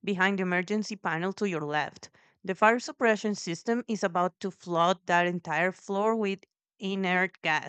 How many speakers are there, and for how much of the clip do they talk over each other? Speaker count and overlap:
one, no overlap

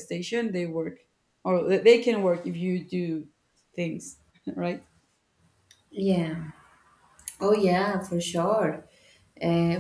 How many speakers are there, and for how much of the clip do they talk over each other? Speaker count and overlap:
two, no overlap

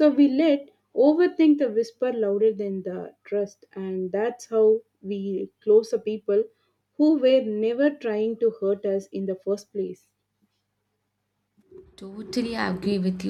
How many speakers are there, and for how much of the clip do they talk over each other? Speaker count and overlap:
two, no overlap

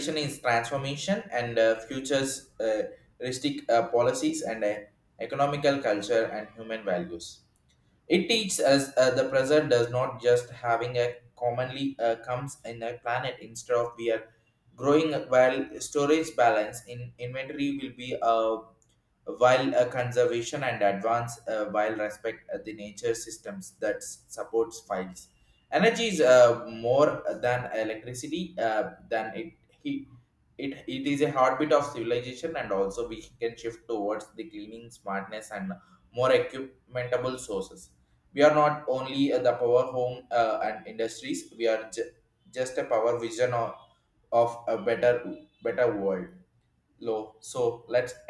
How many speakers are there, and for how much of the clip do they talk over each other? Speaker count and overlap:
one, no overlap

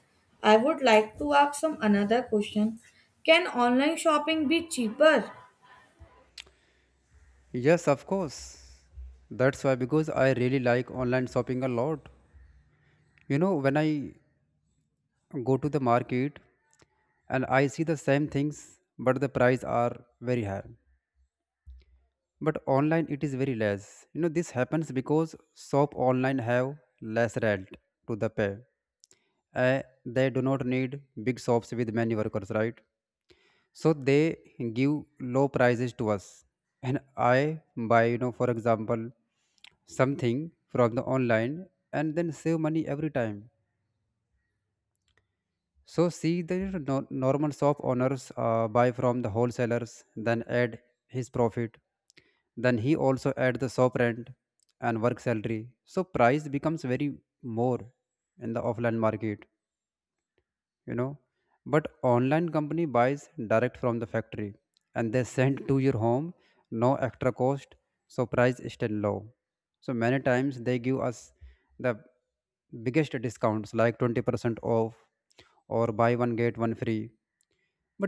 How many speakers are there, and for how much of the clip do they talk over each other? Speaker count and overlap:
two, no overlap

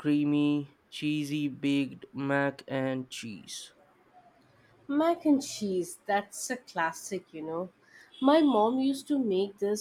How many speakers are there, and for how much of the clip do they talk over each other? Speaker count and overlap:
two, no overlap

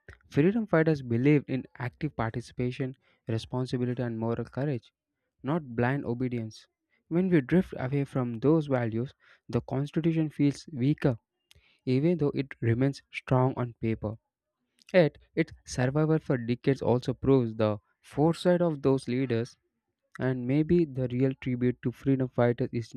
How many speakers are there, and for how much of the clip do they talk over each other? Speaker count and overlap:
one, no overlap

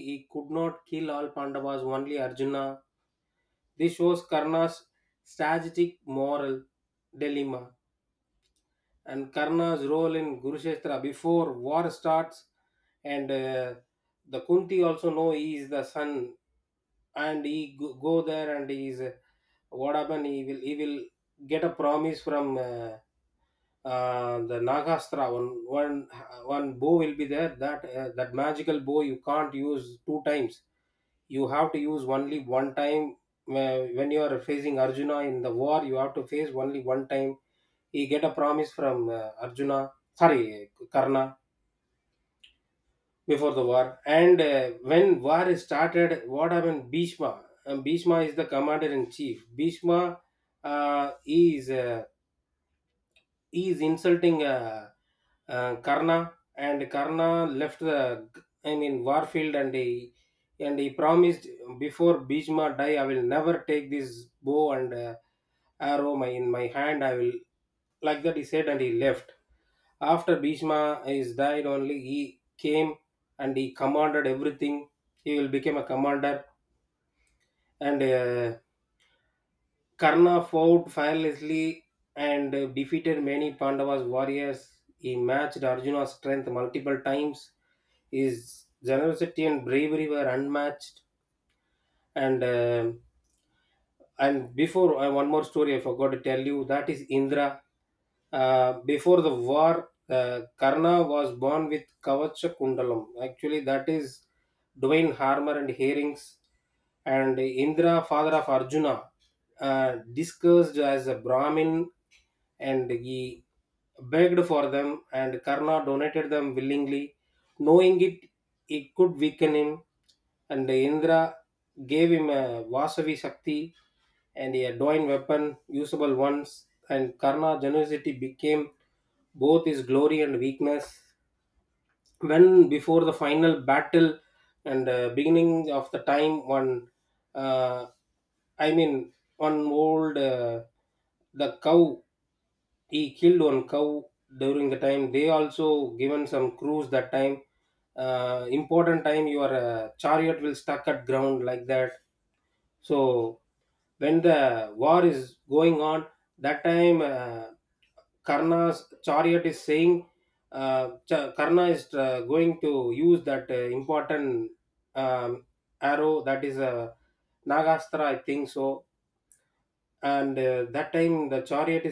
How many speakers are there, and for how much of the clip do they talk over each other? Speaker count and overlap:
one, no overlap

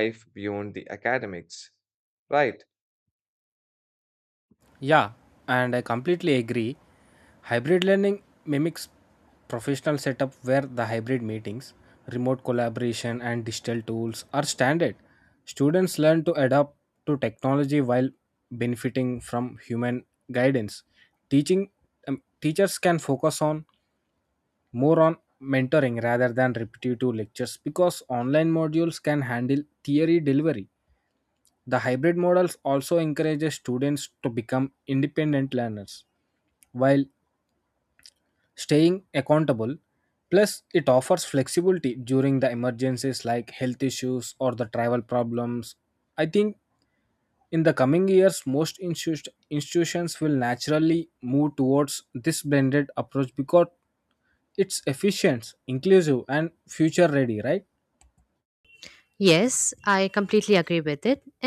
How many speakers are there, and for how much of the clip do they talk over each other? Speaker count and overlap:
three, no overlap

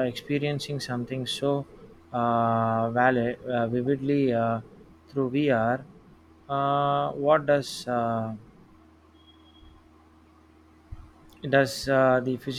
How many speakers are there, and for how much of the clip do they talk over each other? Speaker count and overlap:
one, no overlap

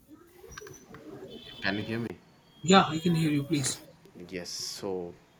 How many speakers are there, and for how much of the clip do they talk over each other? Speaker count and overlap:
two, no overlap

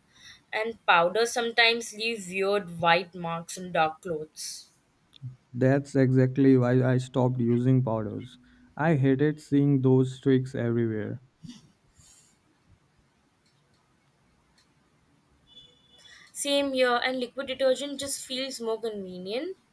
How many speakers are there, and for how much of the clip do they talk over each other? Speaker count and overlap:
two, no overlap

